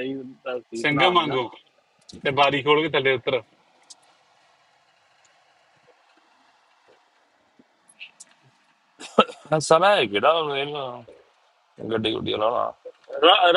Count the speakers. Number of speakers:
3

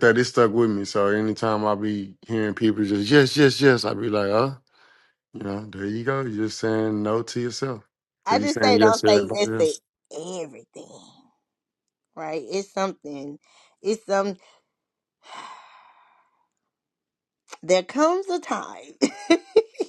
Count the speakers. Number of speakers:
2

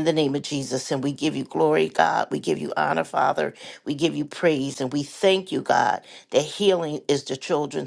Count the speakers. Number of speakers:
1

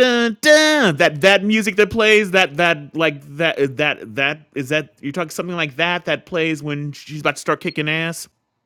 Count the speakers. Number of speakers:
1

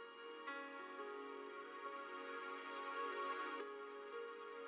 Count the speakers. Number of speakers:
0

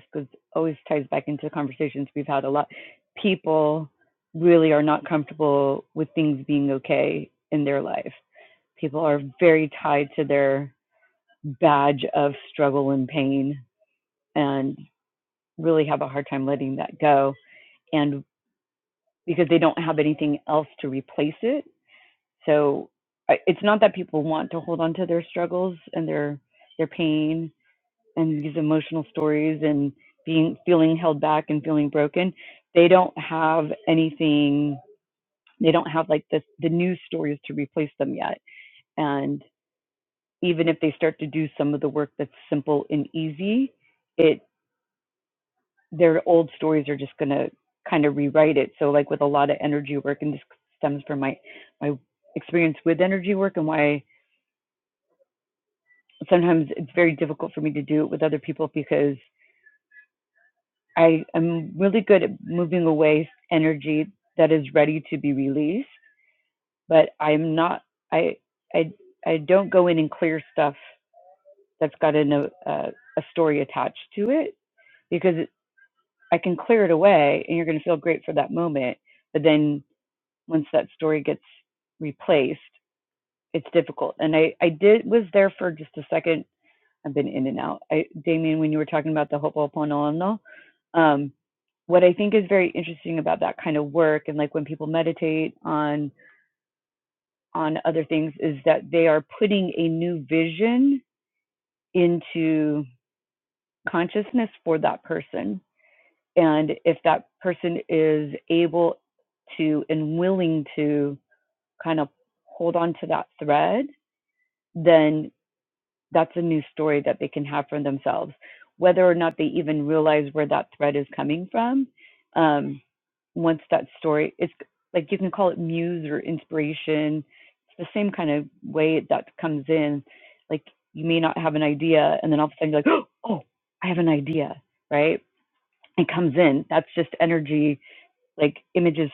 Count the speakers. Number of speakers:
1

